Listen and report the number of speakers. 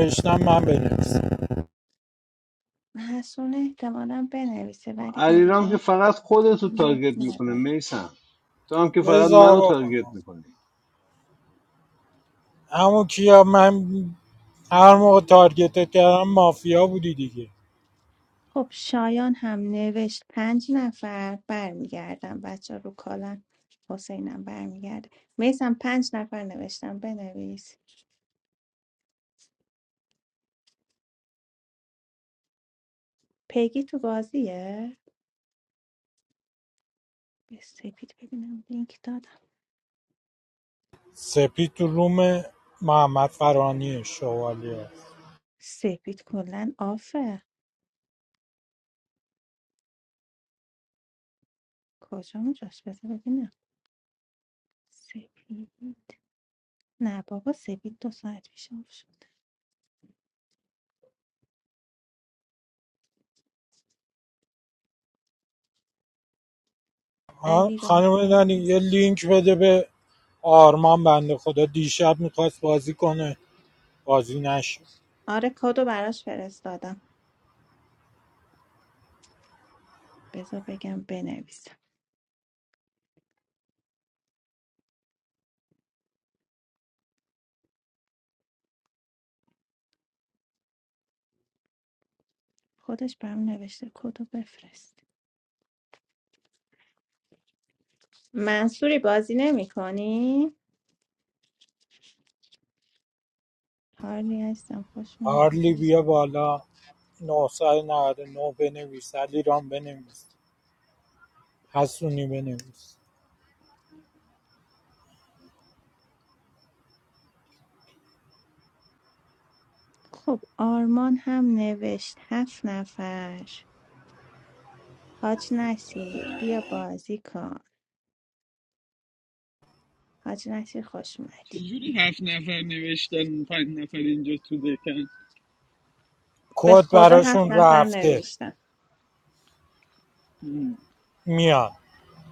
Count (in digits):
4